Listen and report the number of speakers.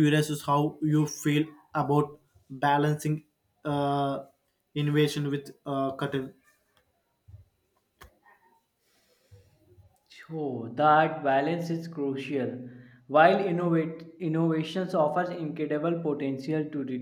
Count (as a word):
two